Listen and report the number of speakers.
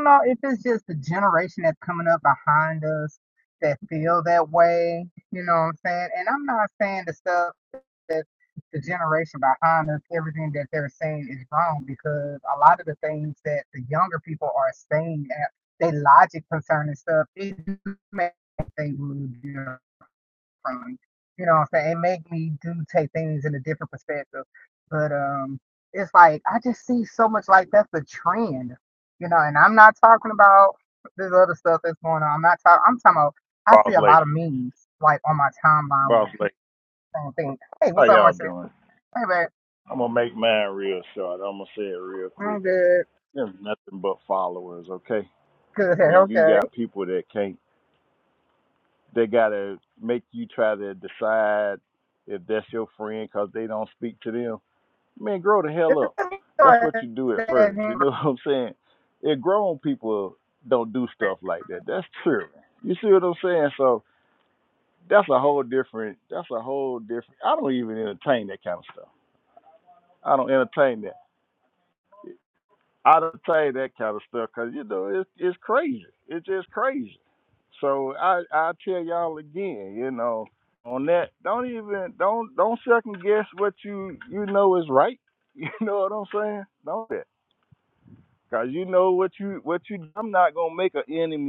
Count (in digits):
2